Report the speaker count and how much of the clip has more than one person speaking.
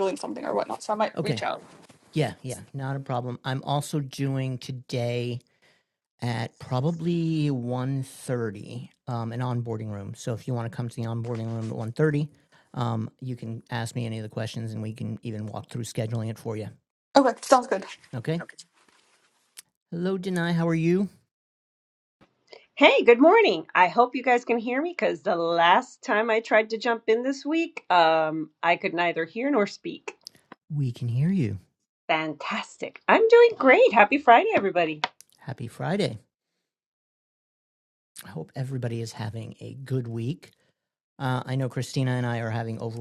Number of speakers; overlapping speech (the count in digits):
3, about 1%